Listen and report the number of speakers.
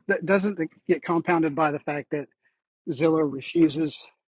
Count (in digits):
1